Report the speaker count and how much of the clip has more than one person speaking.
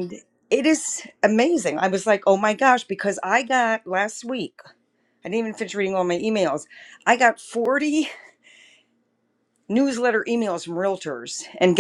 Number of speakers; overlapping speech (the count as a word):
one, no overlap